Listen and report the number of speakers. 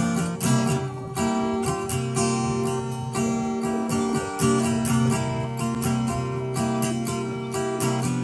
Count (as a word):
zero